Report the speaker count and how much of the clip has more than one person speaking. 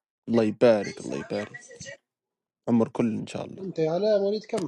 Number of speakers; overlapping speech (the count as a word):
two, no overlap